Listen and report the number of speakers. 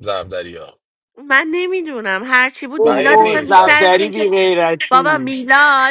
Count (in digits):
3